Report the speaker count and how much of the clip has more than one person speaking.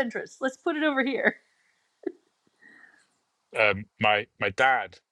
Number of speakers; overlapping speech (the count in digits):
2, no overlap